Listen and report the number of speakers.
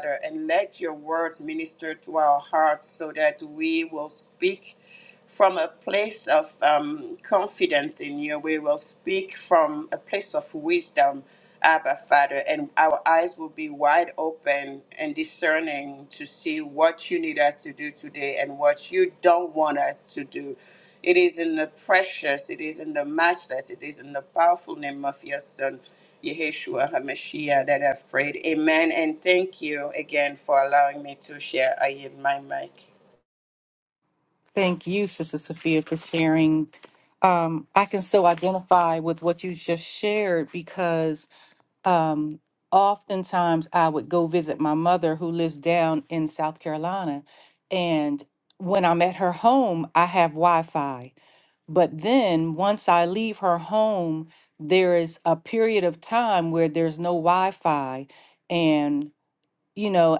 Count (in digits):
2